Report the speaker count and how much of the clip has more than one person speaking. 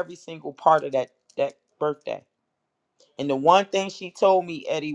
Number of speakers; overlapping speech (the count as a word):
one, no overlap